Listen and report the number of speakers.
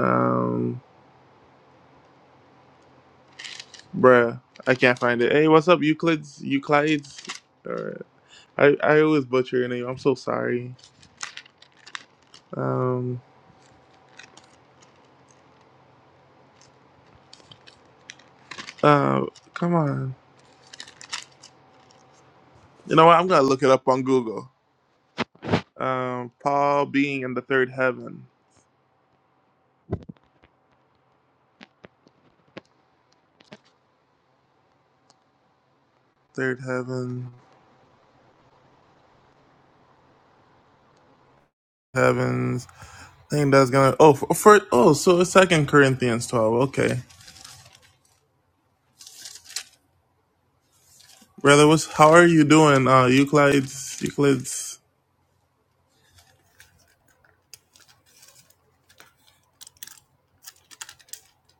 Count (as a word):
one